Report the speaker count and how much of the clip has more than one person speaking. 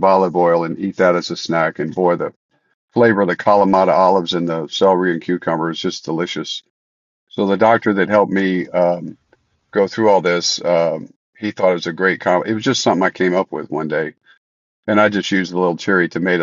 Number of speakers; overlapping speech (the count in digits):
1, no overlap